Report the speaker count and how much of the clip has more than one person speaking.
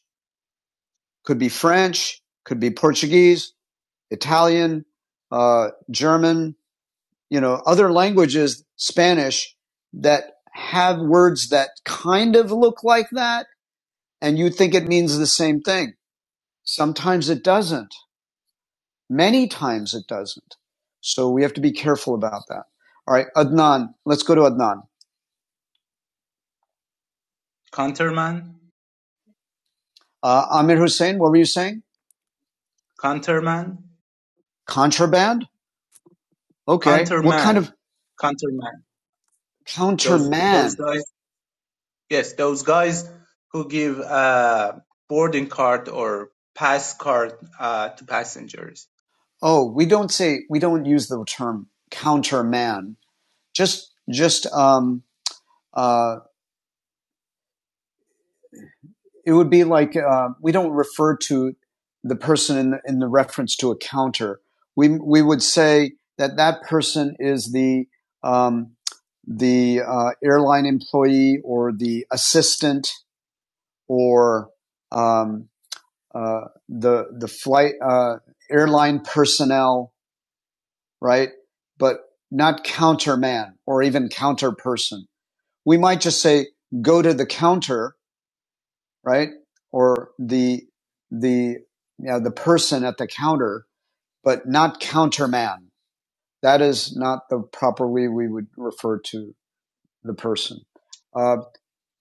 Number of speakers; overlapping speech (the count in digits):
2, about 2%